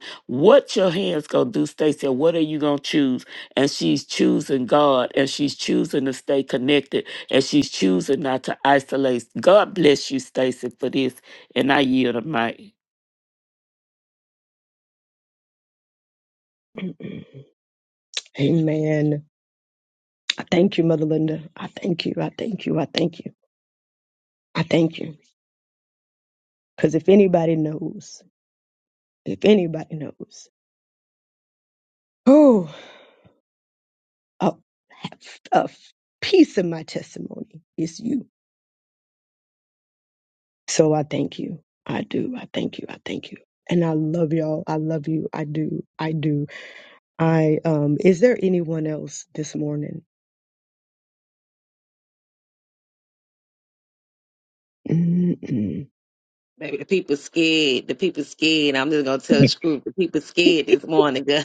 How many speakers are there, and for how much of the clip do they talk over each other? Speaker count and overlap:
3, no overlap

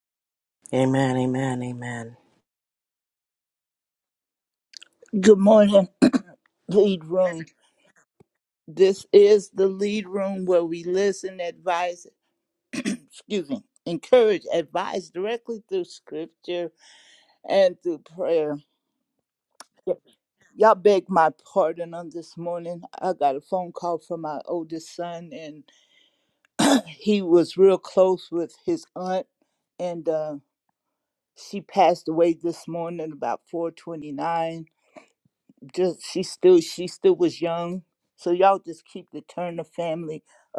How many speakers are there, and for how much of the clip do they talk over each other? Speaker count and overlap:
2, no overlap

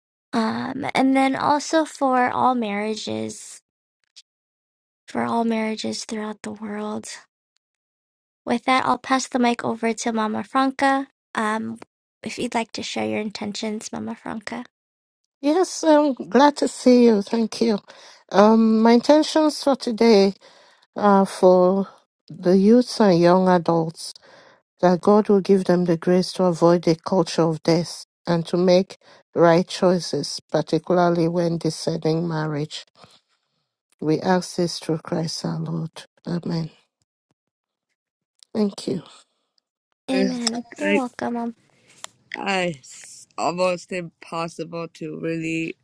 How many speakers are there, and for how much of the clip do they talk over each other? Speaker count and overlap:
3, about 1%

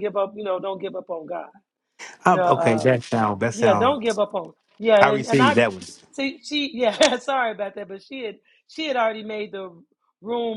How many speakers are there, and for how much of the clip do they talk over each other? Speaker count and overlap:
2, about 17%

